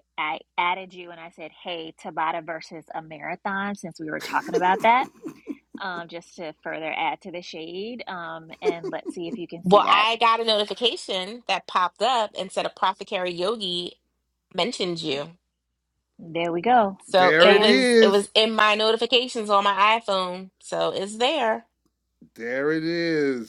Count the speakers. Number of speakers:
3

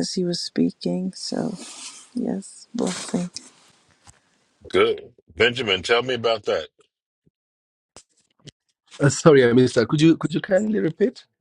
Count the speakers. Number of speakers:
3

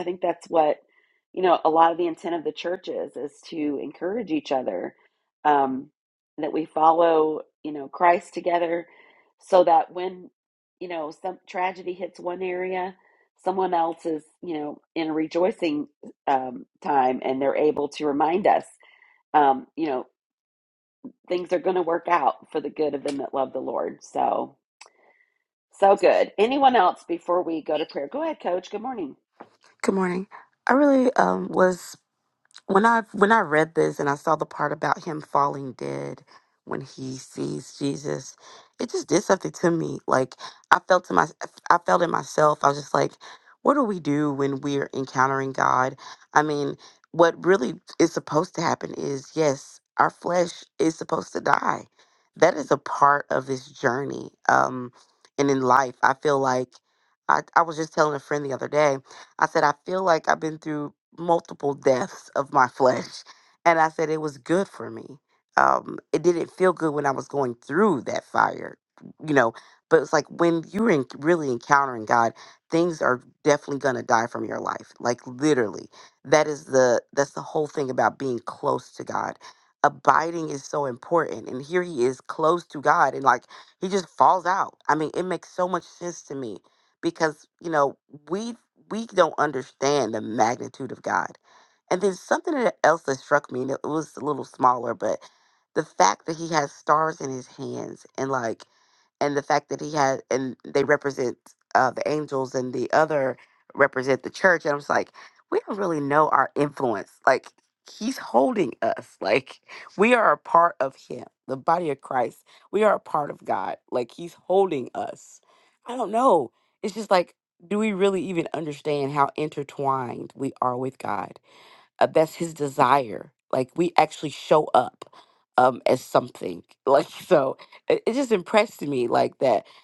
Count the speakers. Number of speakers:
2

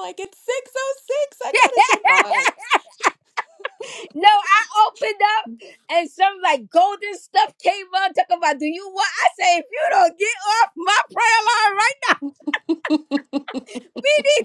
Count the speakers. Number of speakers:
2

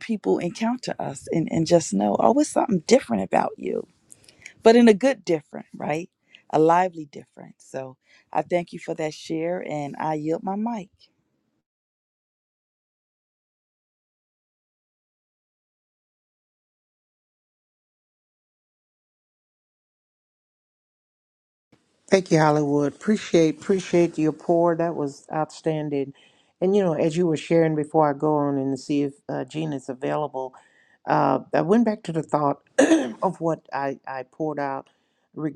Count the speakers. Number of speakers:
2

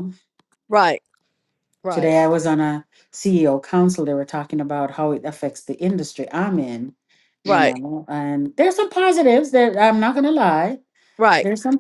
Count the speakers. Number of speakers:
2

